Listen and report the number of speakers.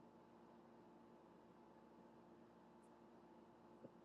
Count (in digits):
0